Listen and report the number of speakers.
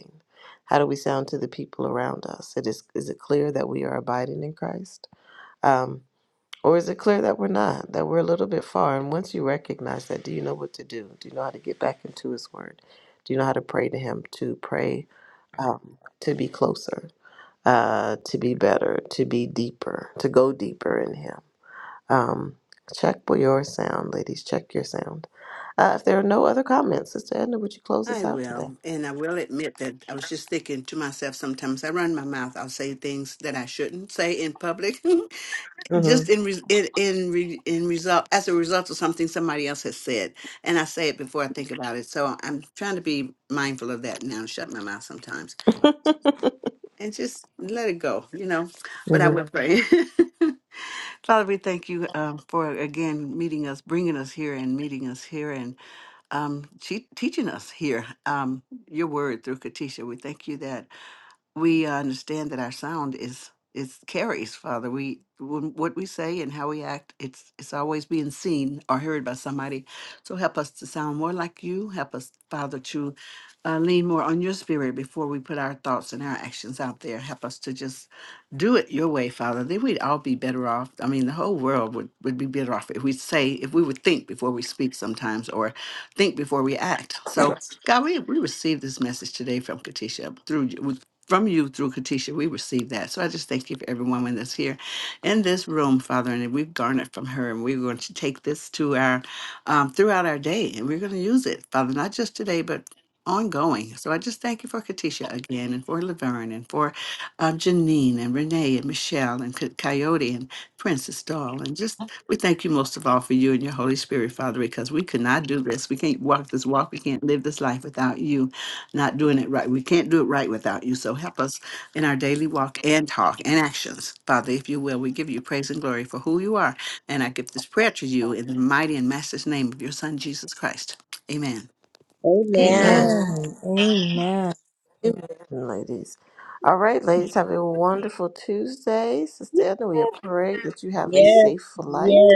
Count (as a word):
four